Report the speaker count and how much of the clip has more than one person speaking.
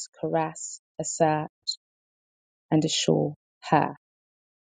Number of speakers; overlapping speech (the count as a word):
one, no overlap